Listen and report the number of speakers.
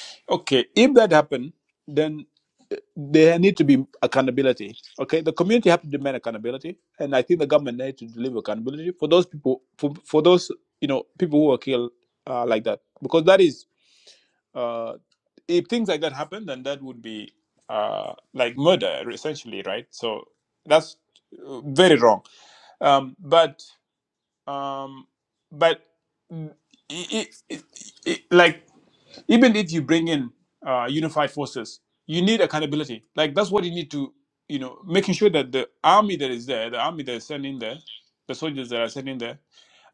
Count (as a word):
one